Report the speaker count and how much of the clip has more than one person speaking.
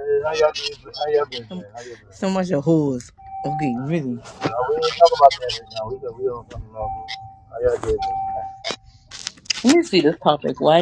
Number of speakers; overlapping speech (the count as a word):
three, no overlap